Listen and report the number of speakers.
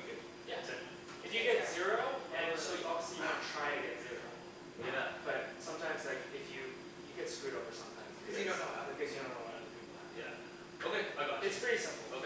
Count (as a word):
three